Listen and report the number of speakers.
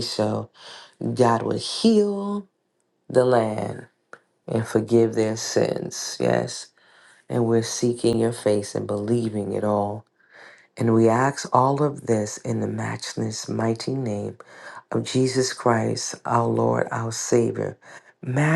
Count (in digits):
1